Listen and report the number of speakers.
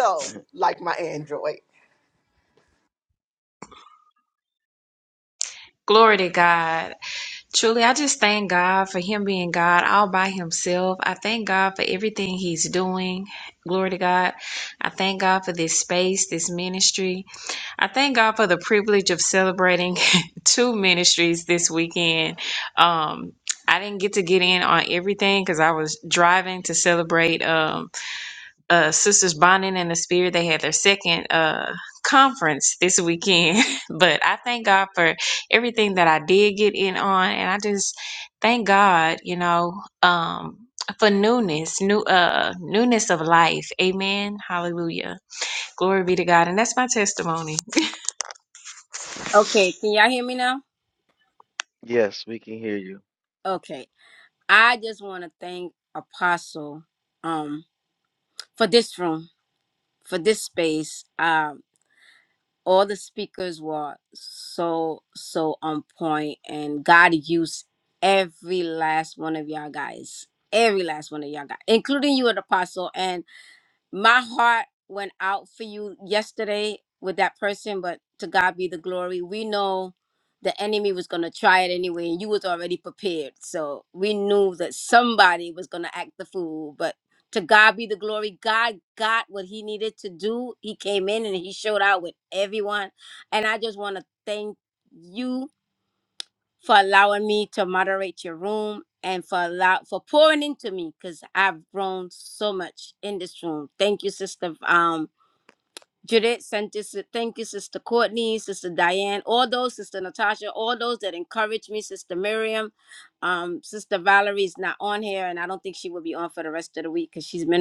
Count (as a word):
four